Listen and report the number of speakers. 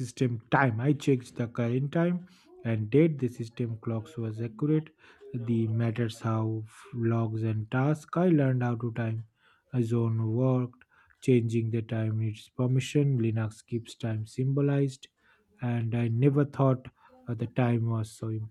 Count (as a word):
one